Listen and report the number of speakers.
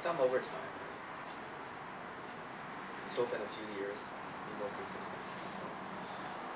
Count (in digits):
1